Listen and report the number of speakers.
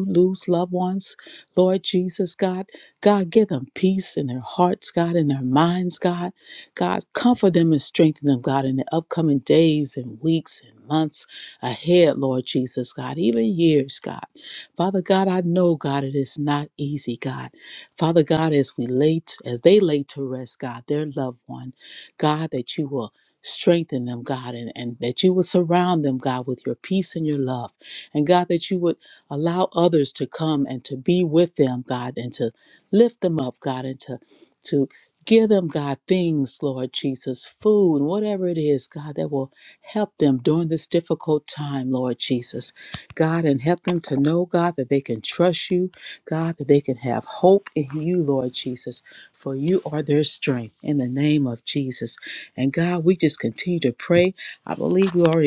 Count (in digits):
1